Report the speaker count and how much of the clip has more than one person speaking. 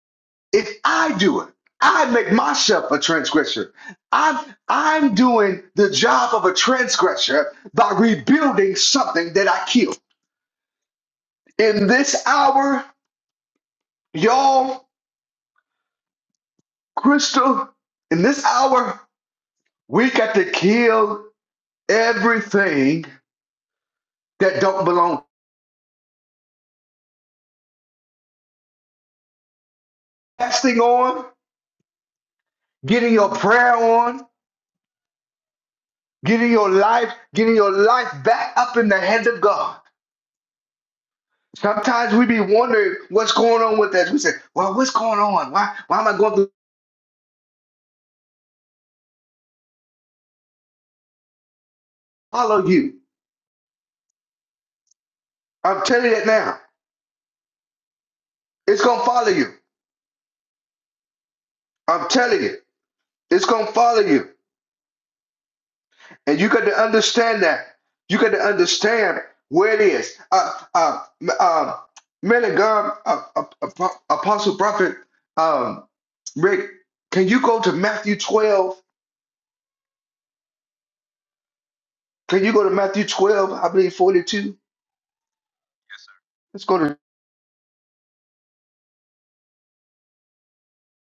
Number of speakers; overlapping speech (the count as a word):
one, no overlap